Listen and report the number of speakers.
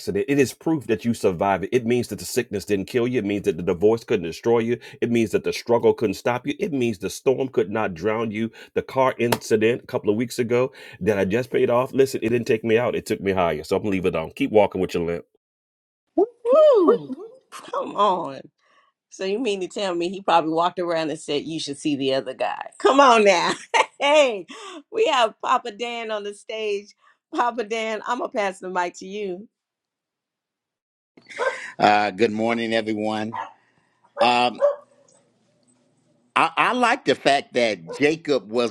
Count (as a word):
three